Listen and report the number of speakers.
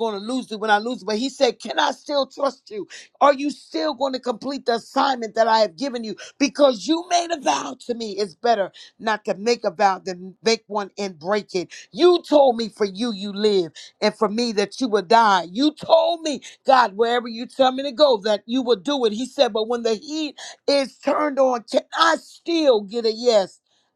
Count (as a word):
one